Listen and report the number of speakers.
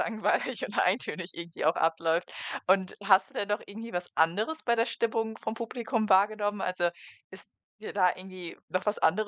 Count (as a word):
one